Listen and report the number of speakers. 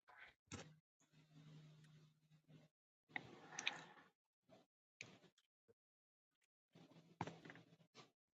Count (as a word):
zero